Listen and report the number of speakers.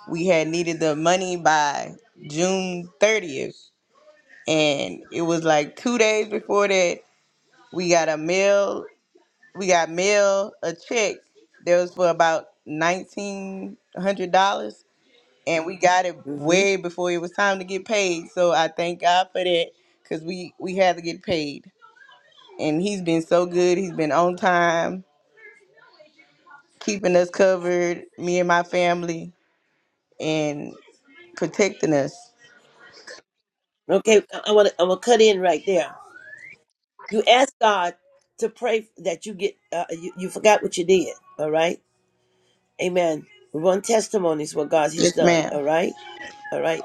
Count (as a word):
two